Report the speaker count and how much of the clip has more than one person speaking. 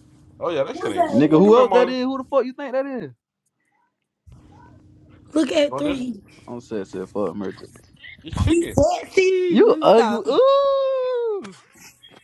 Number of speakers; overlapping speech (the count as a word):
three, about 21%